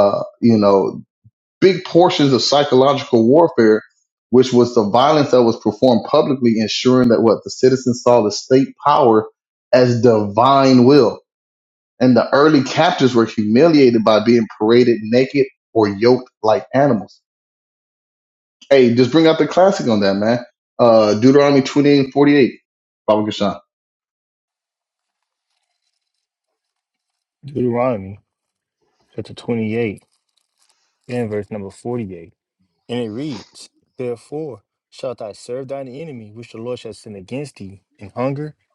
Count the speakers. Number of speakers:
two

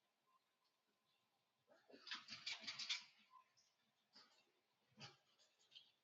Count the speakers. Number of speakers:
zero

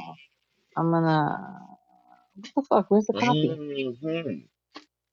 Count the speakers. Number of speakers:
two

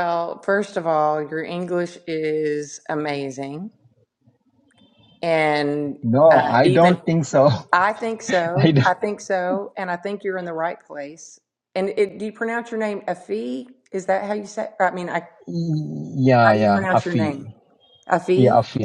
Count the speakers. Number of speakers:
two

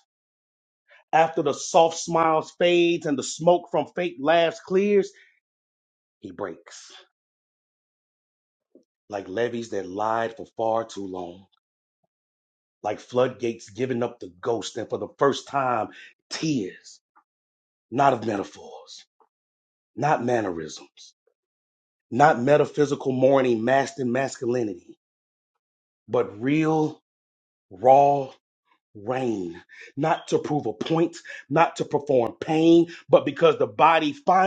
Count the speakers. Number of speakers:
one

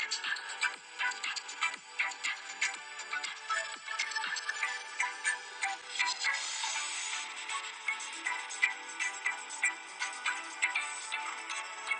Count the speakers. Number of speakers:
zero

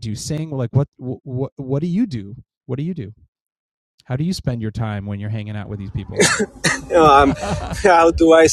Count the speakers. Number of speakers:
two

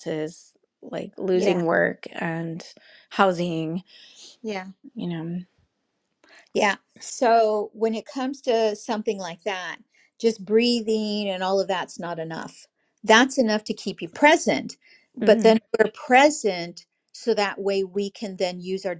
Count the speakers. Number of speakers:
two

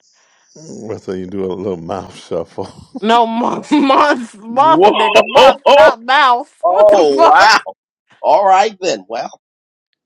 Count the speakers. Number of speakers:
three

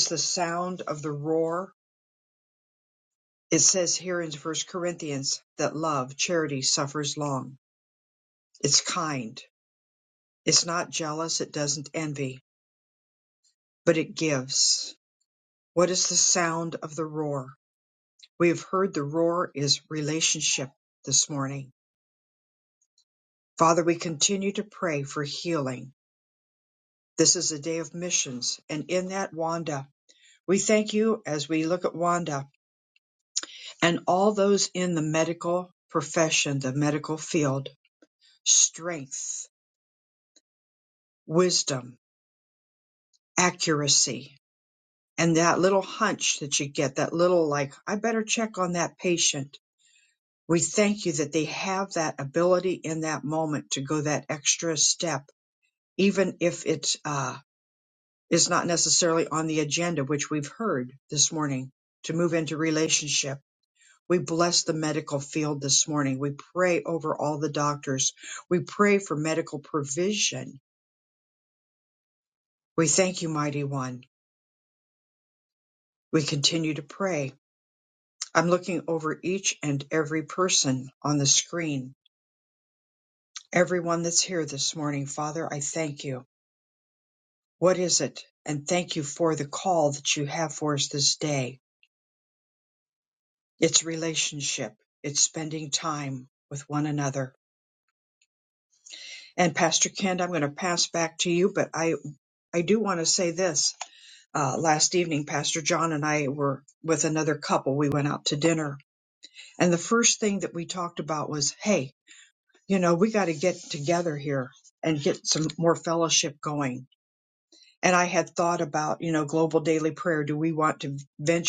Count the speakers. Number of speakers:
one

